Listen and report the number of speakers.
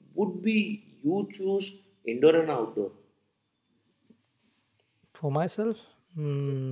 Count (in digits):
2